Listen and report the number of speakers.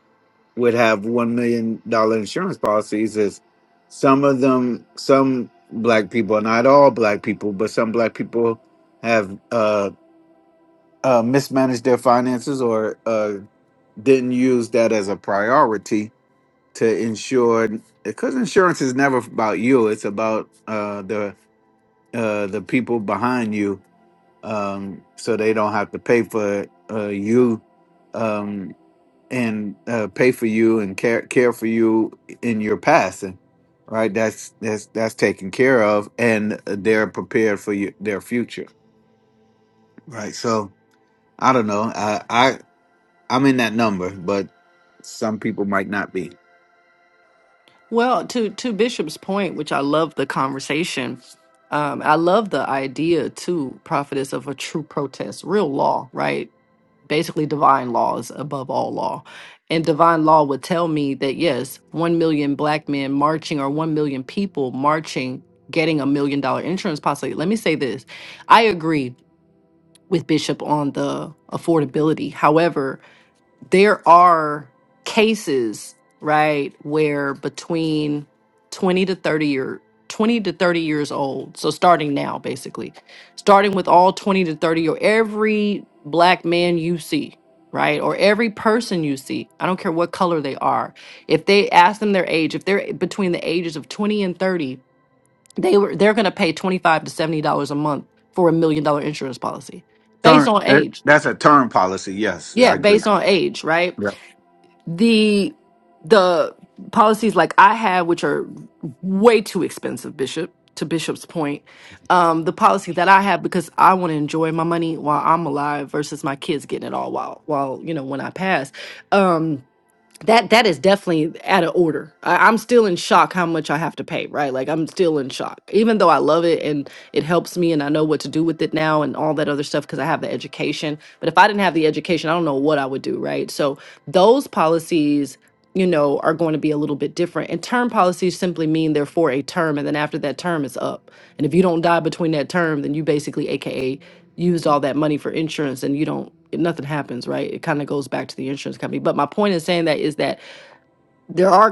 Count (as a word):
two